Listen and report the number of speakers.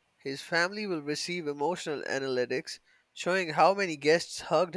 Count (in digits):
1